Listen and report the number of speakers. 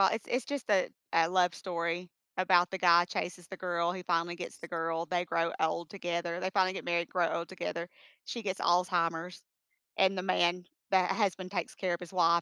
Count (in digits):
1